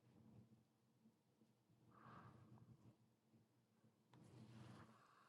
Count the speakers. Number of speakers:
zero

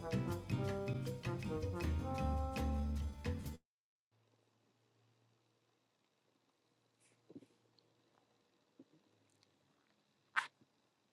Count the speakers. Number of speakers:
zero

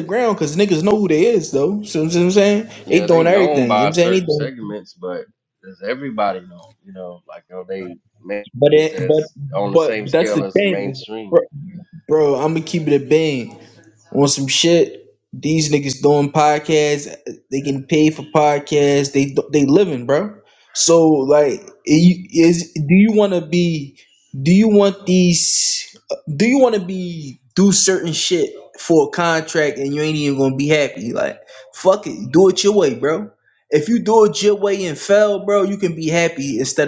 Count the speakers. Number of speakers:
two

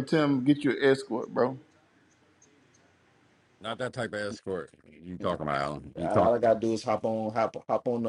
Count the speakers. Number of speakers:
three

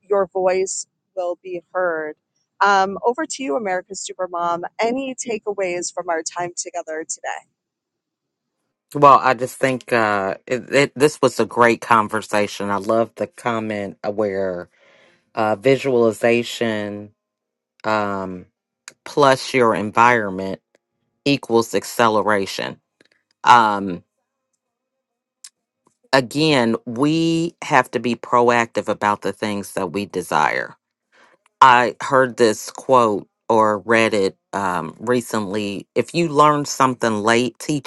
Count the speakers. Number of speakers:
two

